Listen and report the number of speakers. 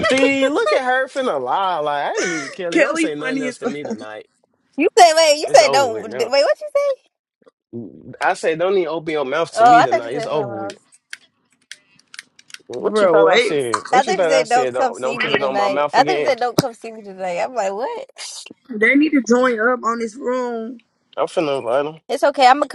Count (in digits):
3